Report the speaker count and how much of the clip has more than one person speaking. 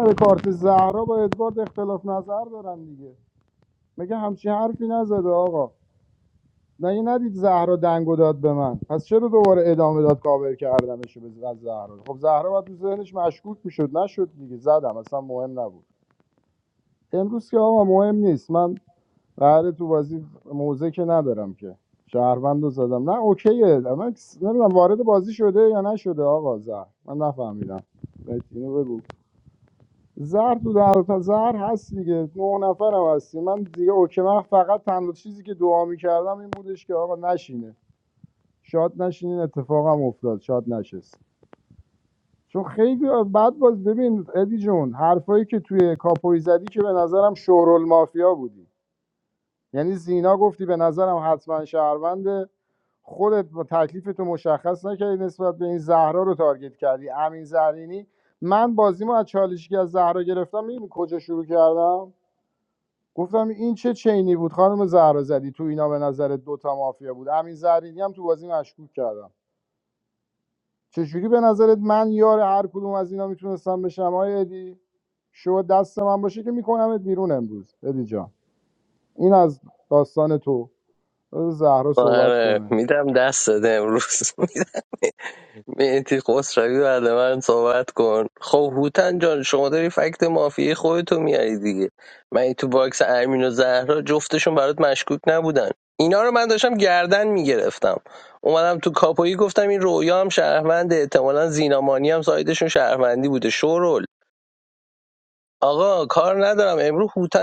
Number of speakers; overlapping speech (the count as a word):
two, about 1%